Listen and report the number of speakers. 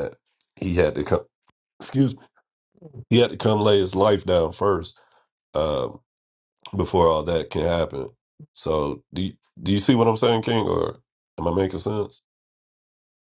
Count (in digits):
1